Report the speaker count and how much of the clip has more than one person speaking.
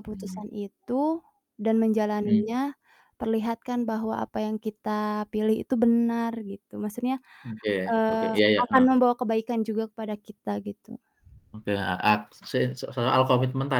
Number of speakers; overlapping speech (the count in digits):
2, about 11%